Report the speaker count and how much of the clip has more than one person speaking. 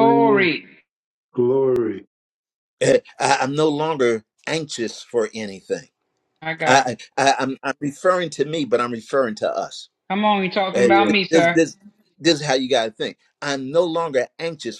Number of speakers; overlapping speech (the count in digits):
3, about 11%